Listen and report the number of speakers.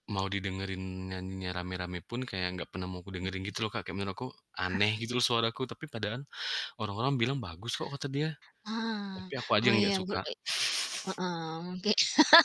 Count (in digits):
2